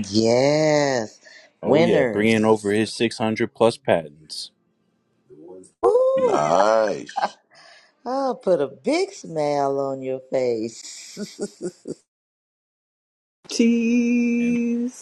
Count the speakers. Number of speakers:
4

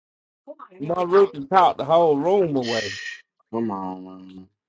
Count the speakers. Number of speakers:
2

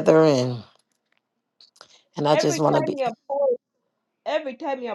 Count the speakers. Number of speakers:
2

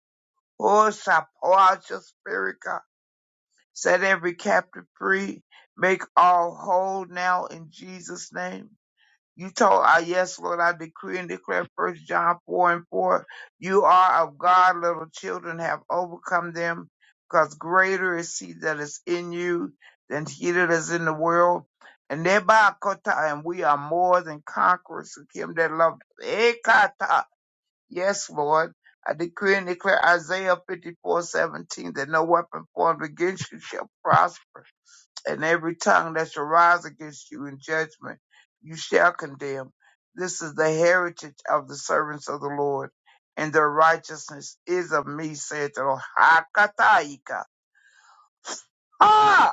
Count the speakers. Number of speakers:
1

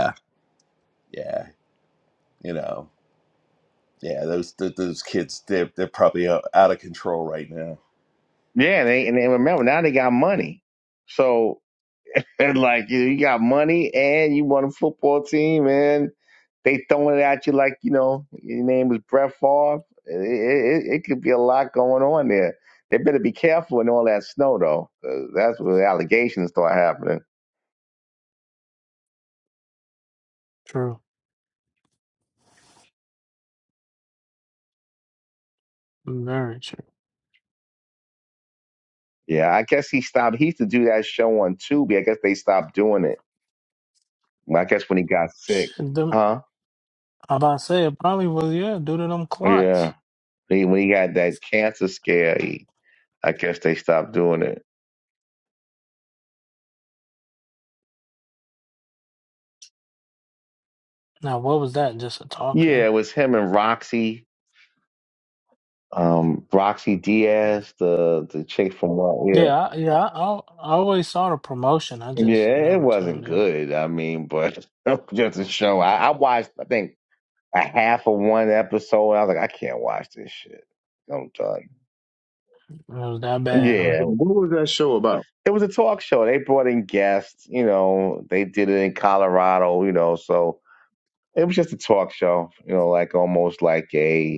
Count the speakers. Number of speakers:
4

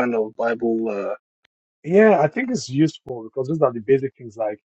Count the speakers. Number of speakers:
2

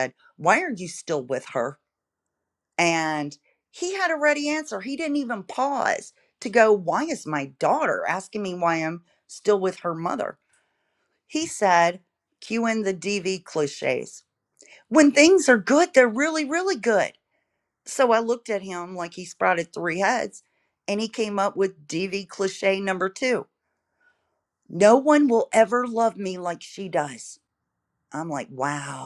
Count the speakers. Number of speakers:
1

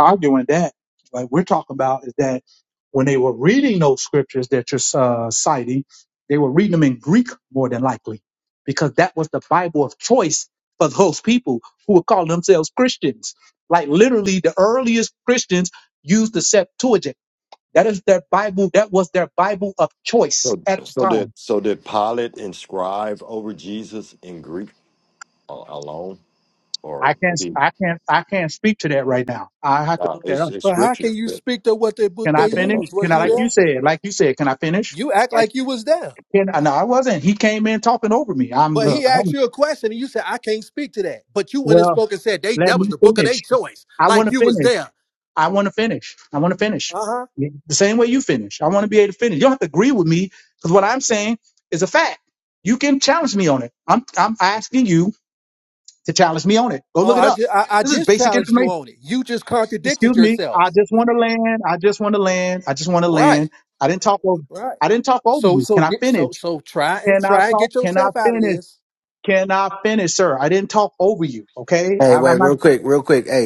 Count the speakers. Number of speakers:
4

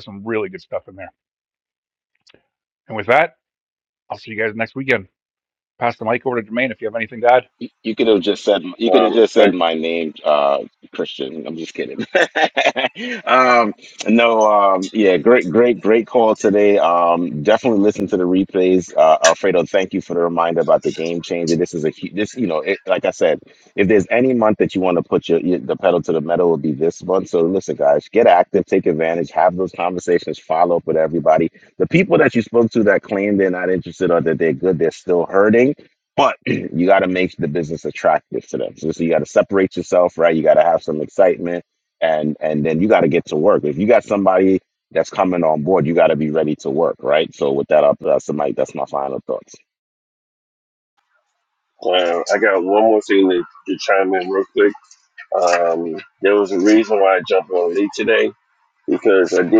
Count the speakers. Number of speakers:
3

